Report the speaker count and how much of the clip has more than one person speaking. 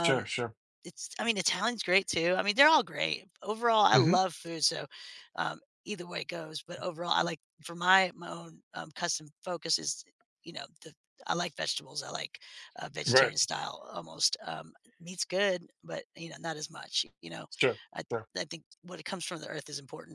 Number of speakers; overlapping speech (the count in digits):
2, about 4%